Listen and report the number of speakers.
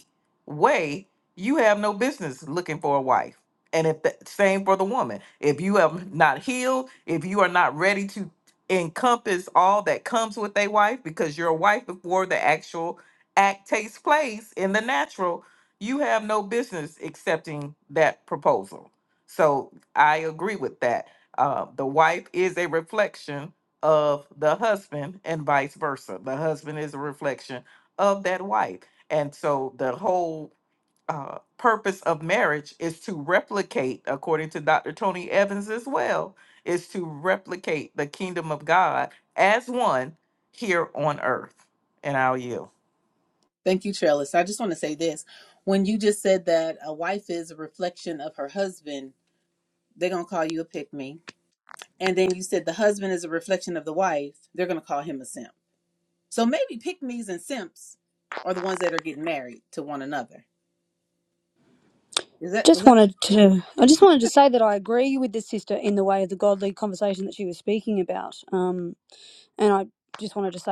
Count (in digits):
3